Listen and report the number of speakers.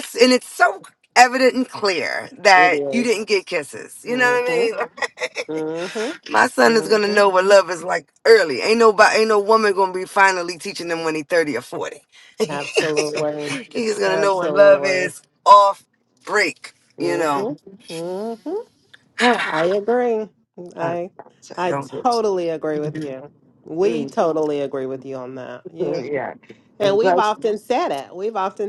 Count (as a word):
two